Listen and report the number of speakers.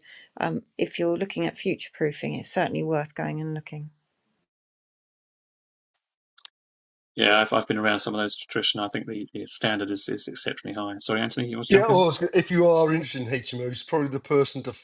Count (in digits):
3